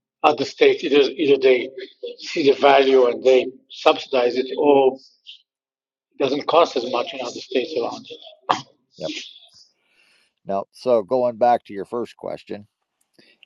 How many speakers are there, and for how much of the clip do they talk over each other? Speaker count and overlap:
2, no overlap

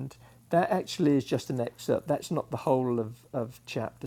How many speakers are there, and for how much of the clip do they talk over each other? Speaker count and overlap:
1, no overlap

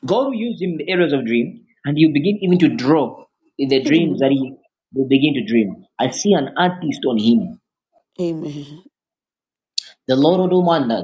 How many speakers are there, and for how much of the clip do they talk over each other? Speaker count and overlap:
2, about 4%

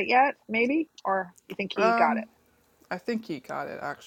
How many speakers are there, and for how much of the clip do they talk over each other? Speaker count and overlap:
2, about 12%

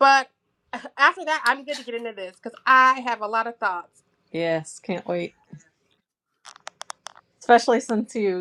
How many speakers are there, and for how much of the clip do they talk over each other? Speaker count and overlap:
2, no overlap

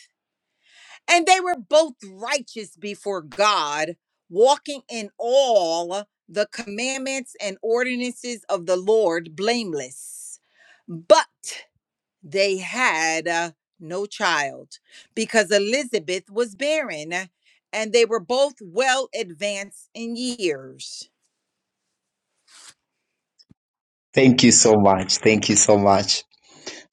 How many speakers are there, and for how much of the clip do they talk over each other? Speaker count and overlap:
2, no overlap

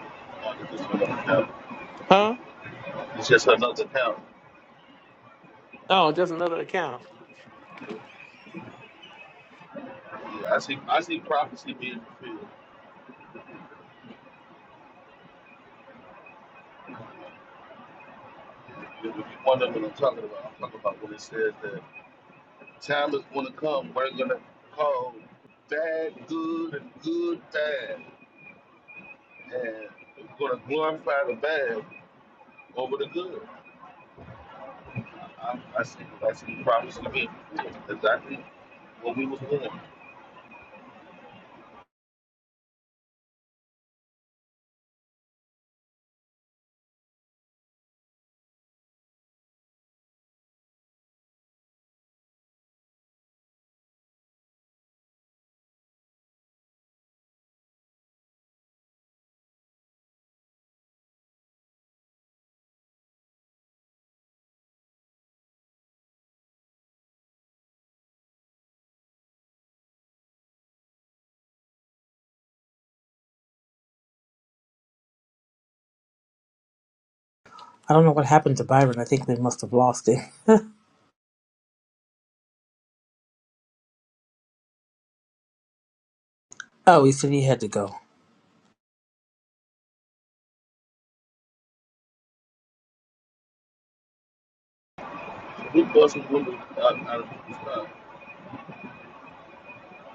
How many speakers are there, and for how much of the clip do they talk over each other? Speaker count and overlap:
3, no overlap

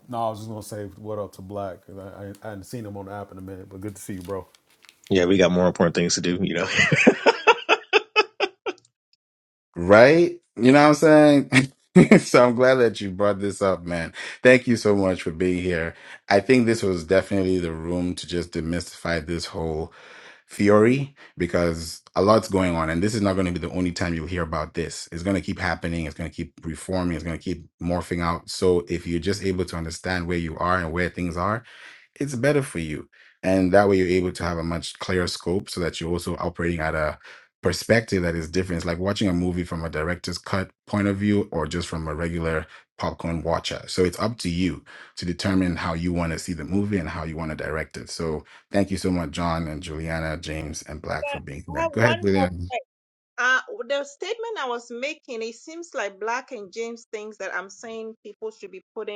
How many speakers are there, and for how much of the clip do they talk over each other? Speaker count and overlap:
4, about 2%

